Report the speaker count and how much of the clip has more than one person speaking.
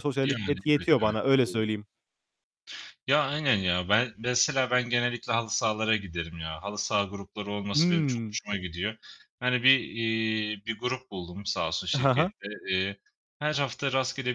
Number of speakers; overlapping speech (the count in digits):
2, about 16%